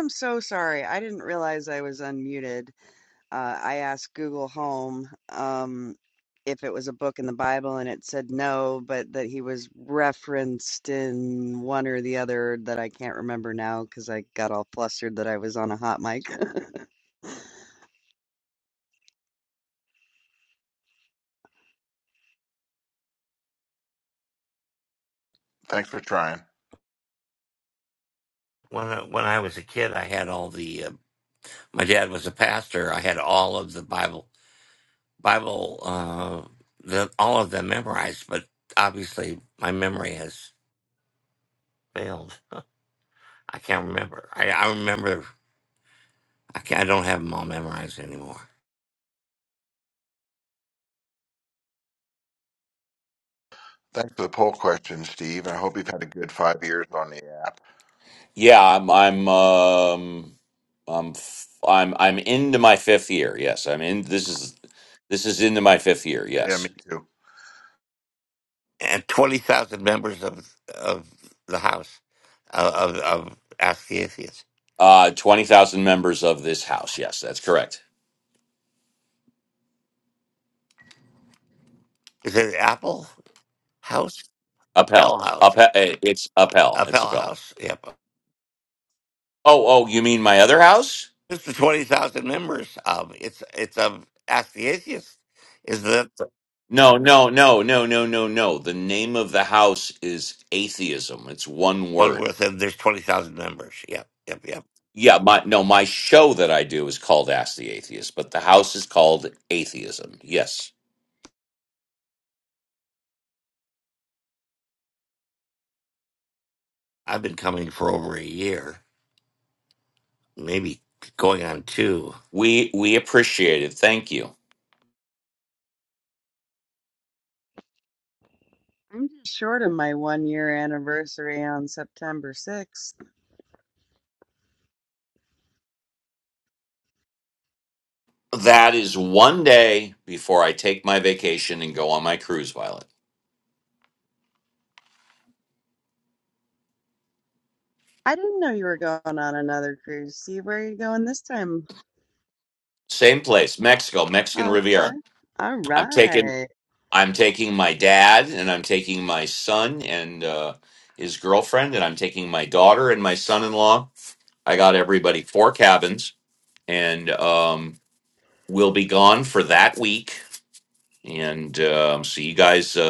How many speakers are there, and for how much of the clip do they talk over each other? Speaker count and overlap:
four, about 2%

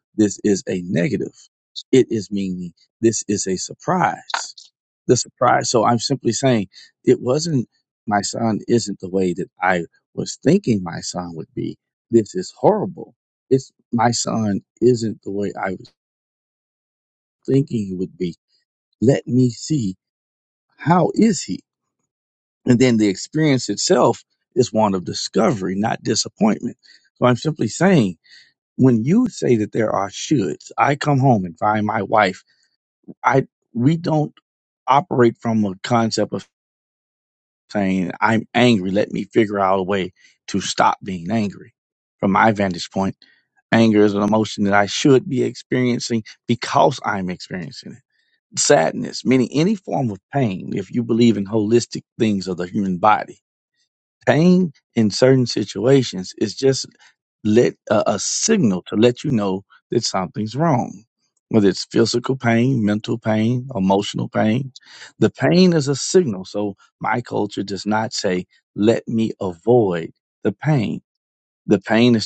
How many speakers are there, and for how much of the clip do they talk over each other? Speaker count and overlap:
one, no overlap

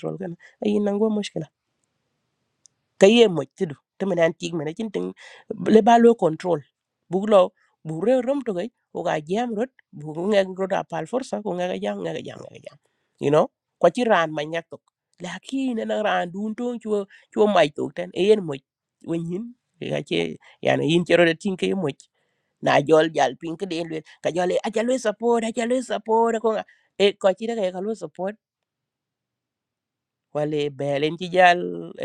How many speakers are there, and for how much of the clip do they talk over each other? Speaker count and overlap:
one, no overlap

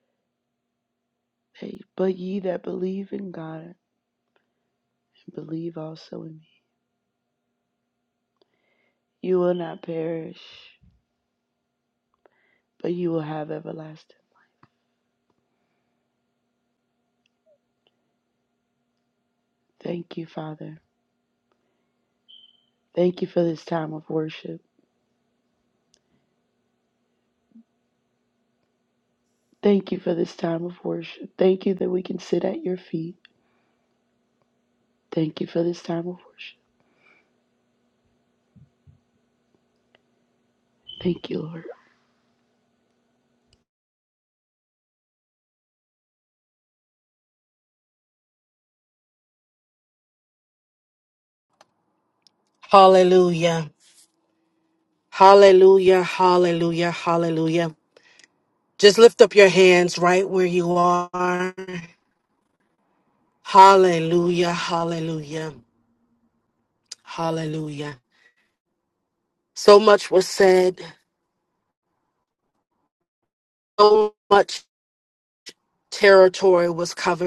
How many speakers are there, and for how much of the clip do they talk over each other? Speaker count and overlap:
two, no overlap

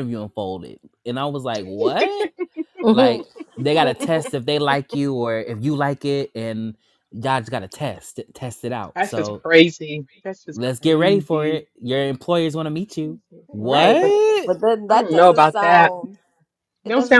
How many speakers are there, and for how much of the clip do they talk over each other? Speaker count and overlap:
three, about 20%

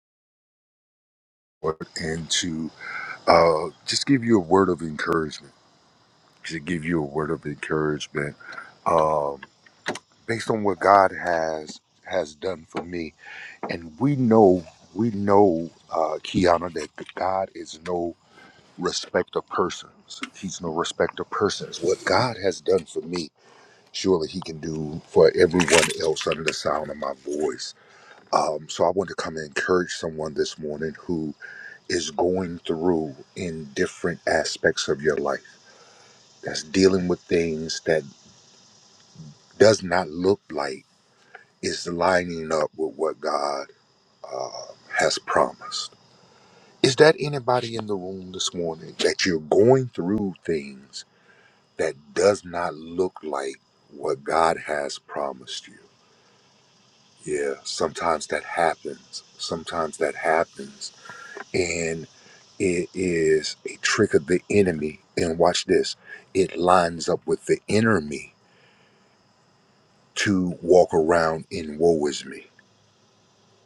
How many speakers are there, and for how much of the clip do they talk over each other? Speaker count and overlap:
one, no overlap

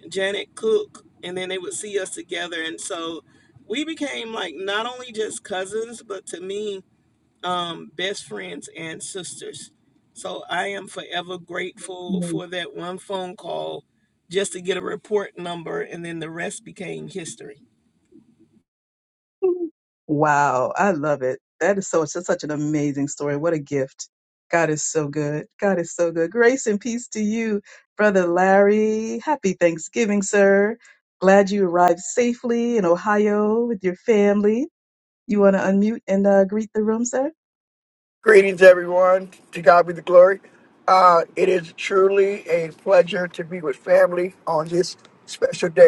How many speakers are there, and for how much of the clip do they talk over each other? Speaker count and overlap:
three, no overlap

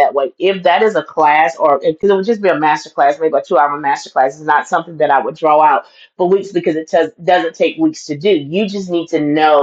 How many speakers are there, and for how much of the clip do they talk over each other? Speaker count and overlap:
one, no overlap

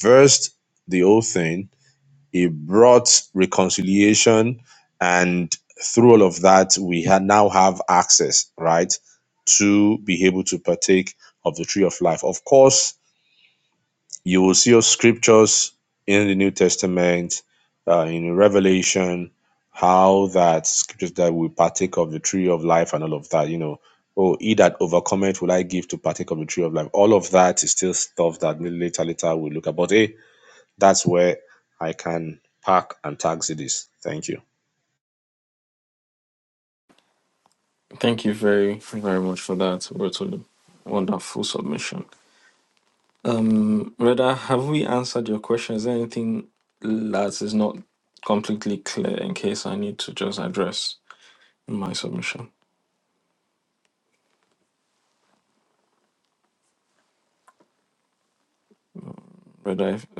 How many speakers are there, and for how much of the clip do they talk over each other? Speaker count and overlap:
two, no overlap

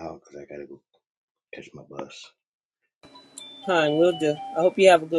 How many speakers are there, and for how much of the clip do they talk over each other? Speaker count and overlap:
two, no overlap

